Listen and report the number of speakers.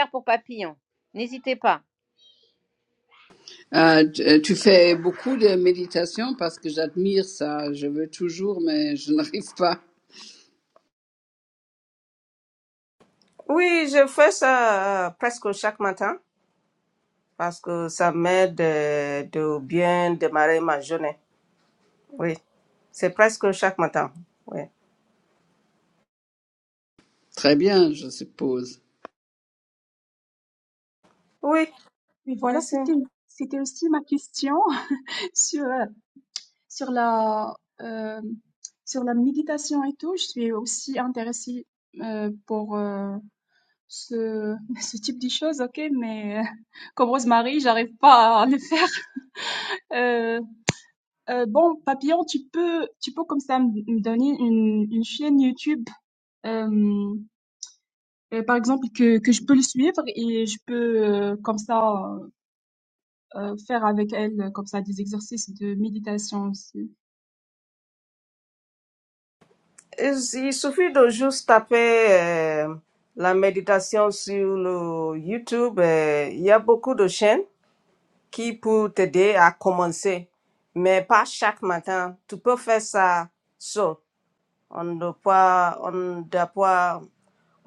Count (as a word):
four